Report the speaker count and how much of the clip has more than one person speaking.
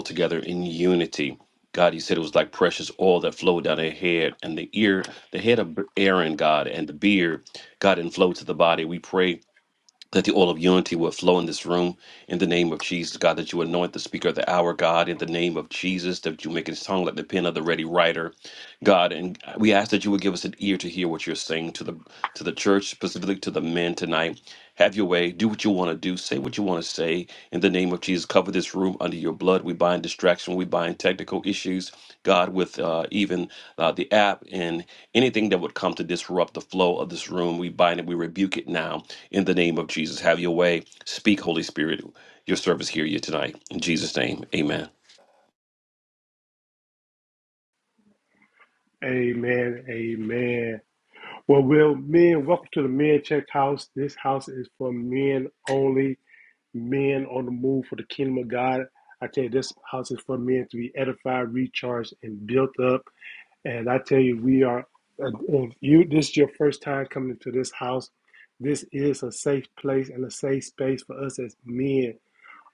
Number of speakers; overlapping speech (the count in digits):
2, no overlap